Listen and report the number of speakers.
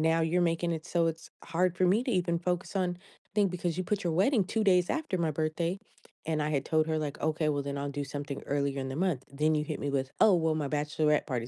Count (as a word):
one